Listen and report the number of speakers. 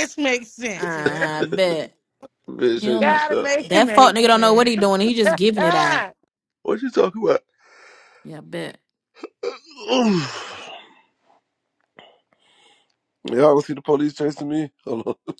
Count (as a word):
three